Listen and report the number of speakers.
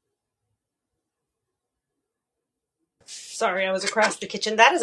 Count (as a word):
one